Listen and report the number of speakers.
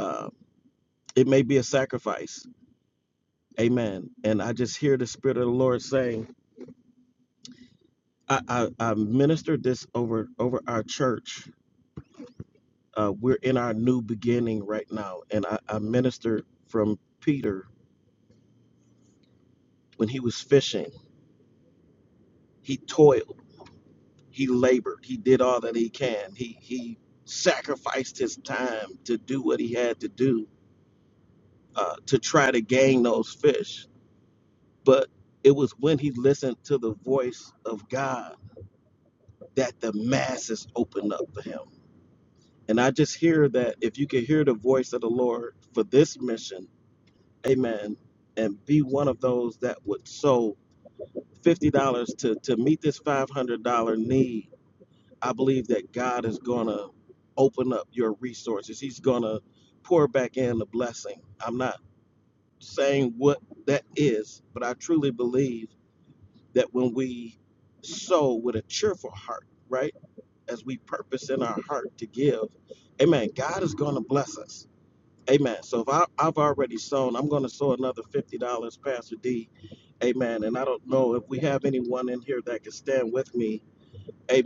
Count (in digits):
1